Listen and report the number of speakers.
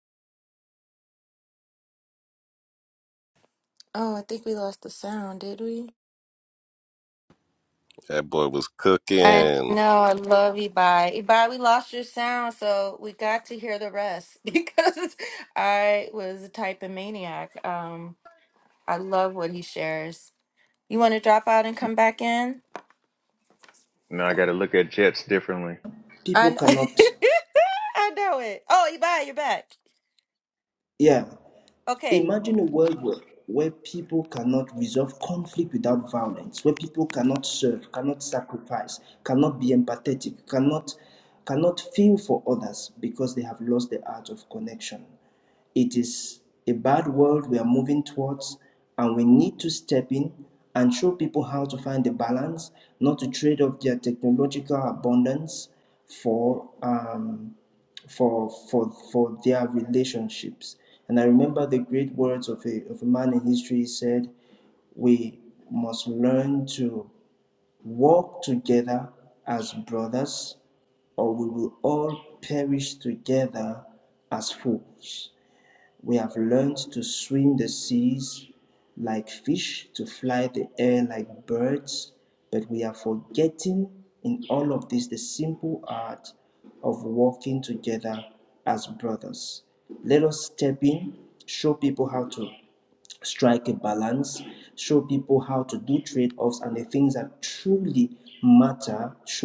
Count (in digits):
4